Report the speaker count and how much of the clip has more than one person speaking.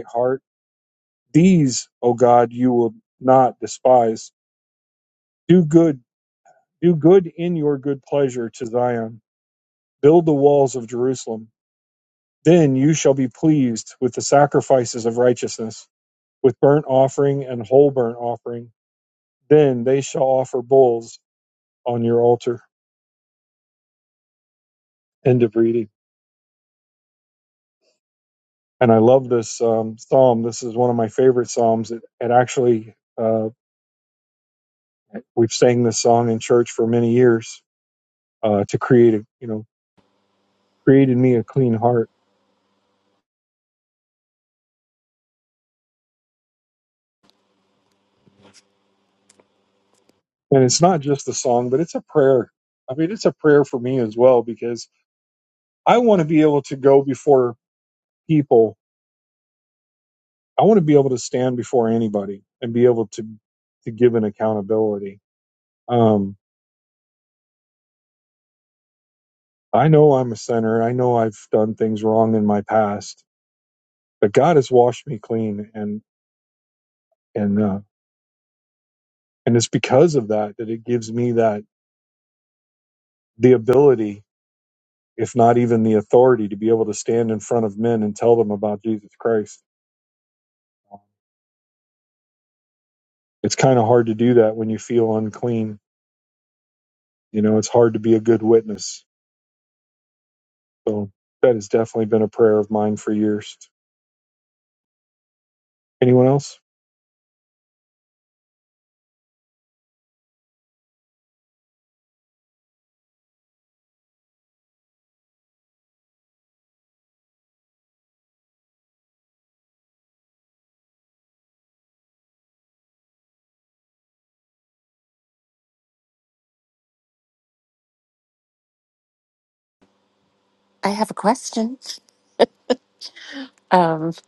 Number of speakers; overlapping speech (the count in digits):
2, no overlap